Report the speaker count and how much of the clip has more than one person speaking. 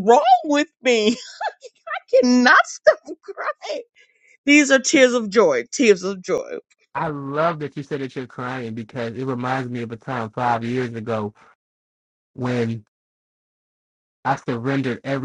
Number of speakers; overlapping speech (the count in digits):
2, no overlap